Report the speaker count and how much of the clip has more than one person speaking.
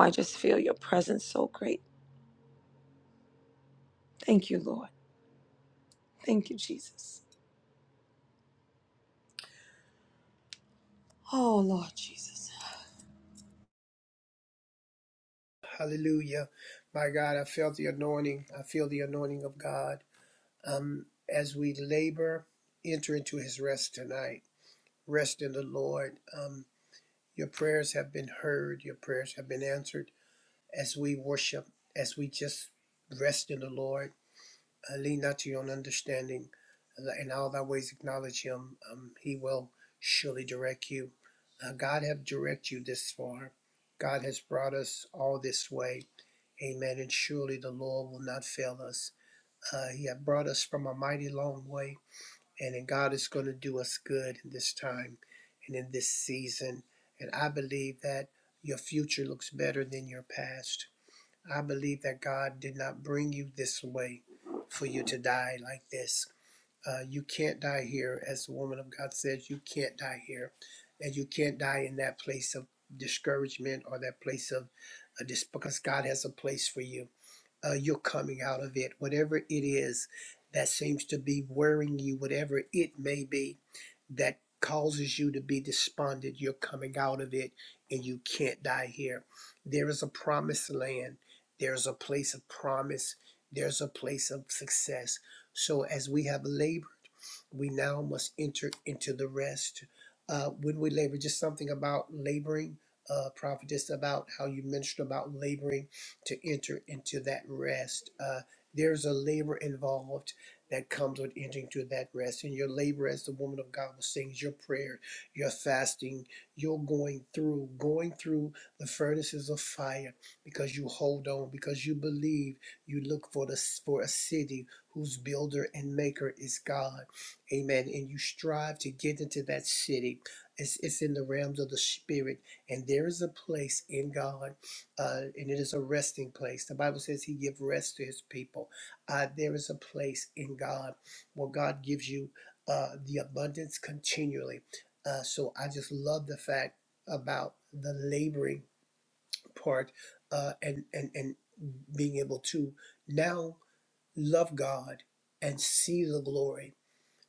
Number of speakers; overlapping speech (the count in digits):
2, no overlap